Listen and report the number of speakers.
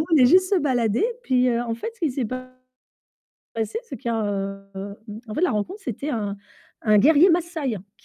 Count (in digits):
1